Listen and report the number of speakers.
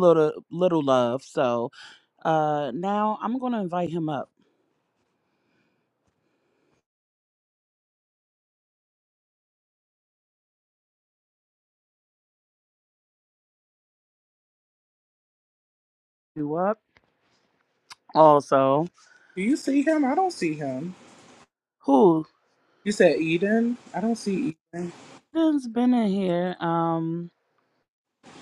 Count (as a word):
two